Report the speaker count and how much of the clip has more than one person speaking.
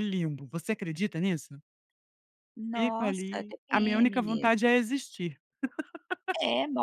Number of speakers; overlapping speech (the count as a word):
two, about 26%